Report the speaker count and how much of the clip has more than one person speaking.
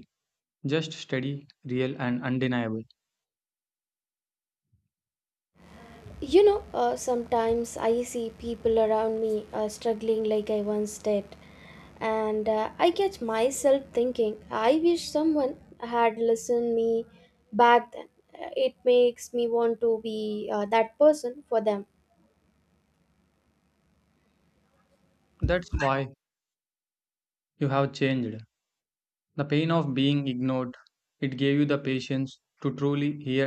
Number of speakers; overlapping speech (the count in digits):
2, no overlap